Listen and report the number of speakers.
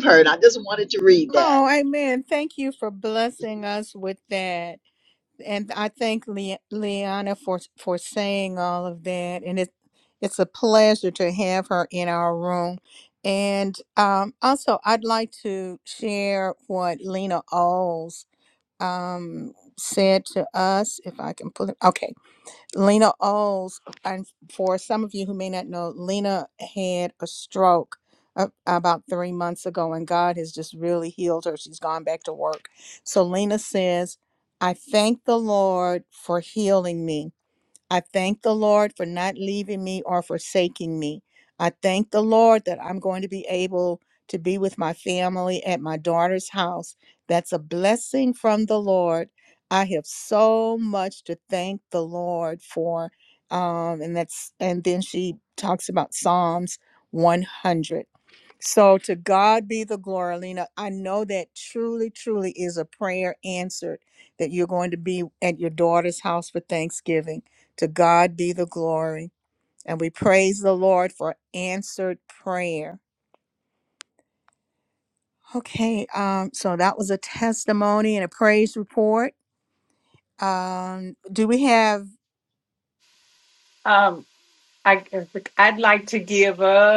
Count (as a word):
three